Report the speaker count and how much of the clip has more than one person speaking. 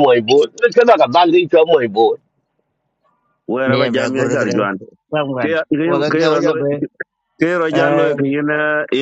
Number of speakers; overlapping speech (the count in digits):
3, about 26%